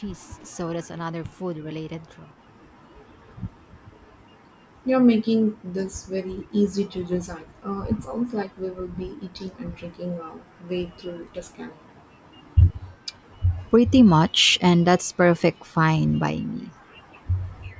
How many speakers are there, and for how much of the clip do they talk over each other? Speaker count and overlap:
2, no overlap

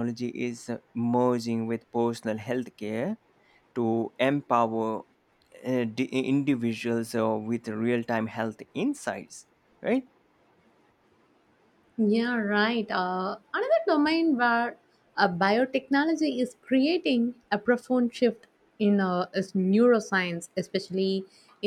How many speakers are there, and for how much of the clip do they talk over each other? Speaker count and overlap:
2, no overlap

